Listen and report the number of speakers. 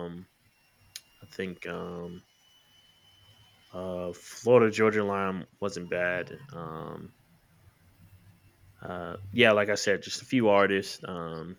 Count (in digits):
1